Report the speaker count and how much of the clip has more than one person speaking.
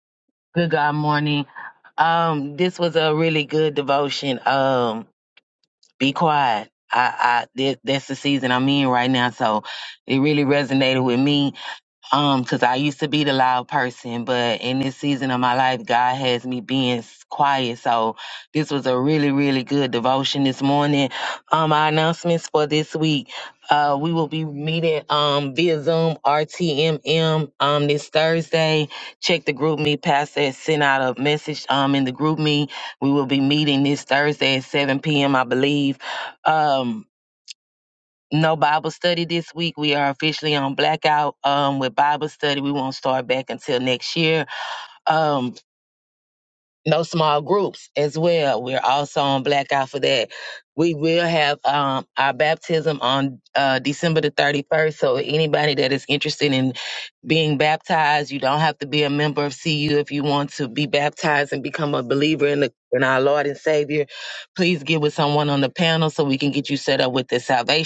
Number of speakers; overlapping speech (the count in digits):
1, no overlap